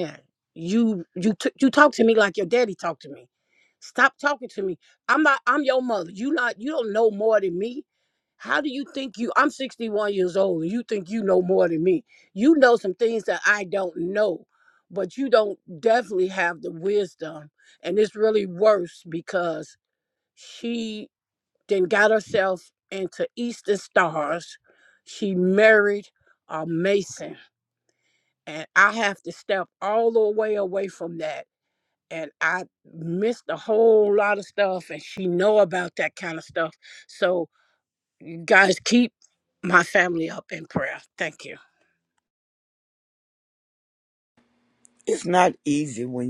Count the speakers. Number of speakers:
2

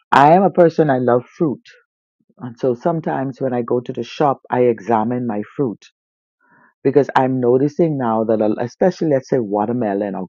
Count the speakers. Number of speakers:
1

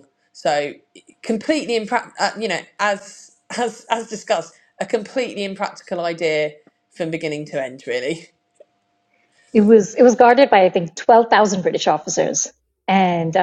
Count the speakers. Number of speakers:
2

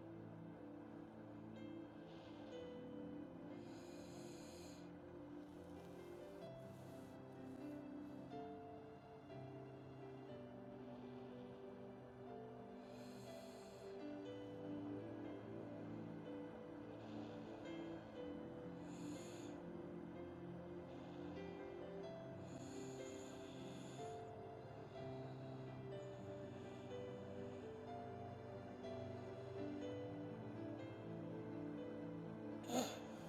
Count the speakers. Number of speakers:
0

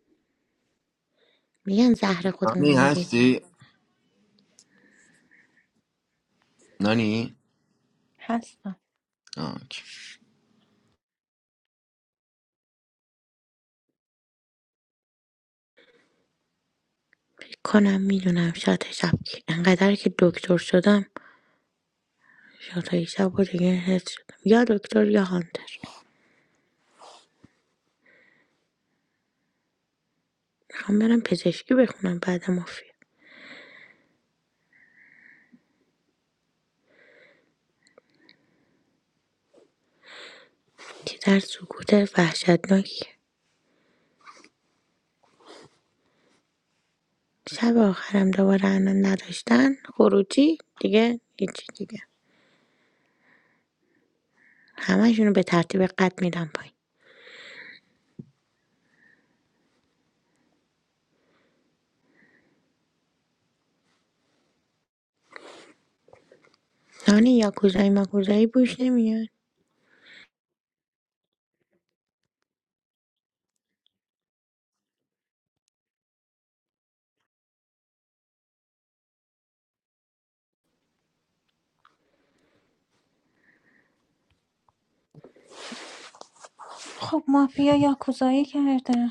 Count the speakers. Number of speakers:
3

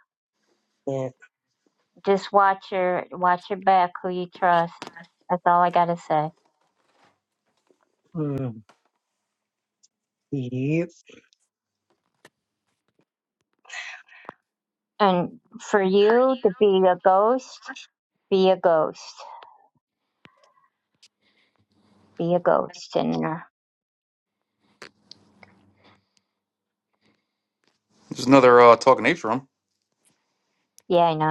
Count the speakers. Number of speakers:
3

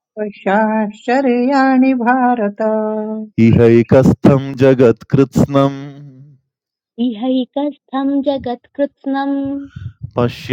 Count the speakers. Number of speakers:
3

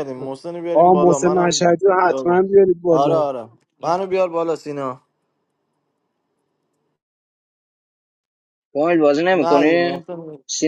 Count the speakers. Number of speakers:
3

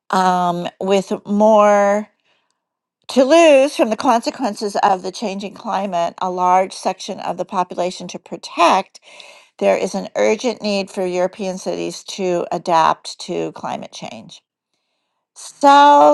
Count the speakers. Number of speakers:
1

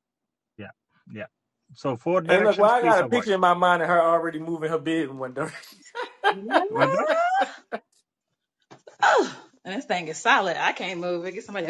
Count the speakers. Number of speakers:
3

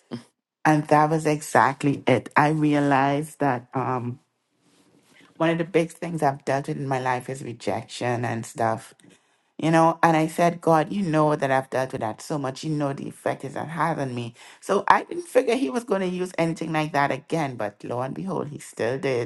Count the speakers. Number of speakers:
1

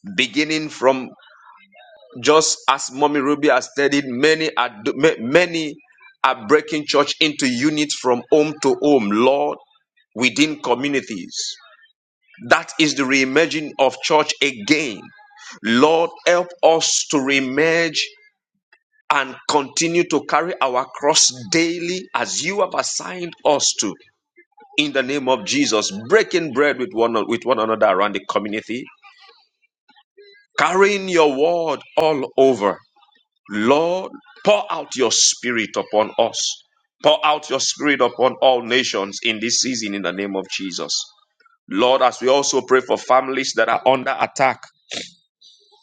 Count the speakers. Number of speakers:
1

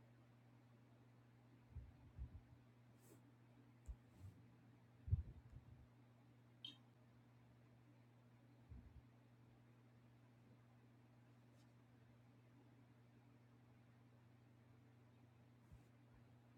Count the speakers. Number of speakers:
0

